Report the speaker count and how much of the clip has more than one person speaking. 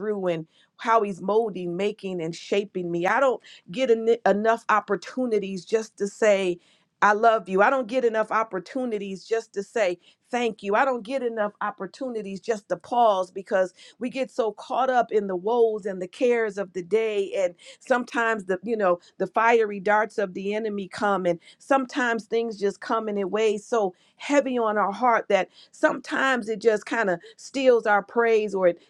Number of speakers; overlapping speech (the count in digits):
1, no overlap